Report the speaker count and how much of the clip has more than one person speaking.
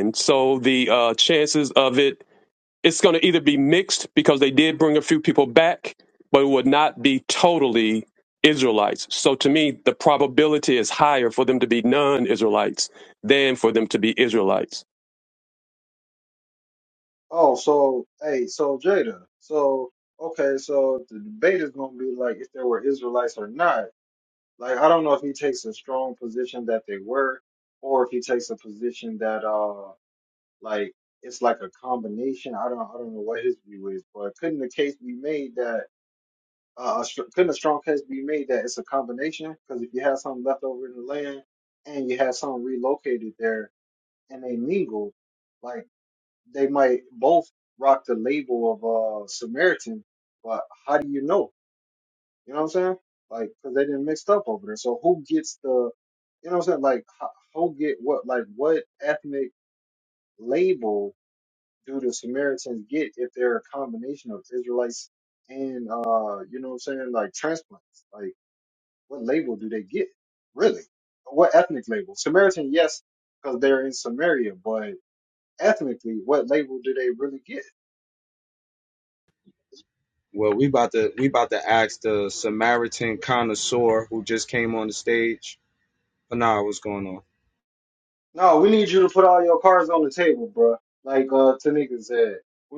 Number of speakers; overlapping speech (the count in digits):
3, no overlap